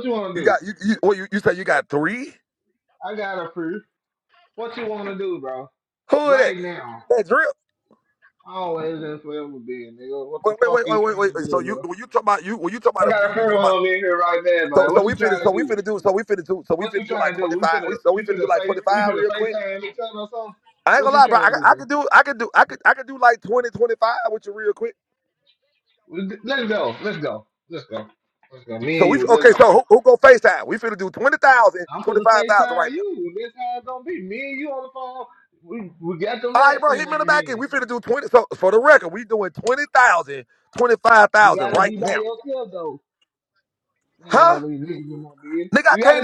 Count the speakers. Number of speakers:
two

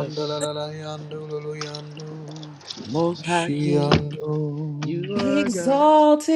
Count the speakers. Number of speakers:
three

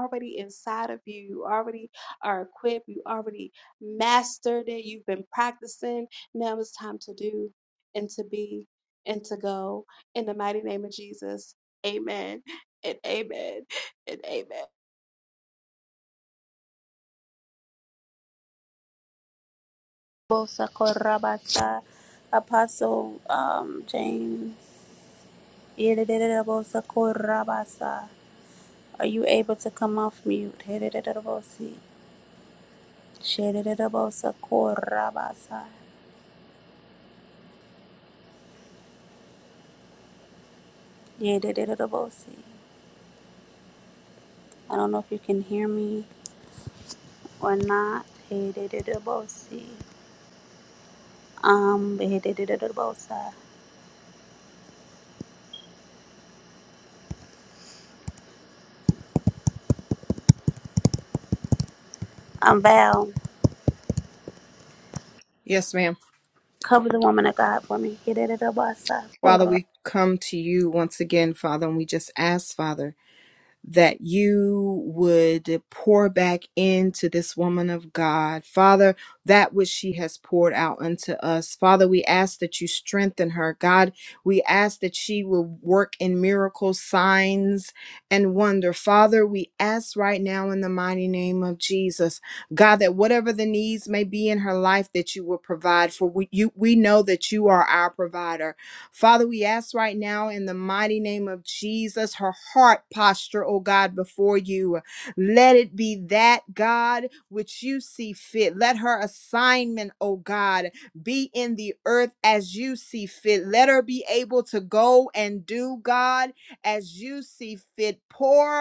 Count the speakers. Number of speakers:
three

